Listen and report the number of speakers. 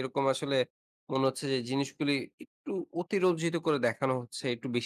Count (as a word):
one